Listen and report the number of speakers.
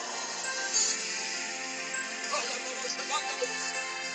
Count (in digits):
0